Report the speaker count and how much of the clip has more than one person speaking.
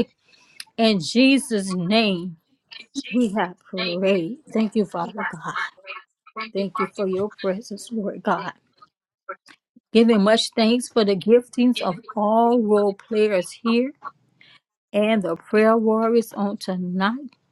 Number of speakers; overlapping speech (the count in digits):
1, no overlap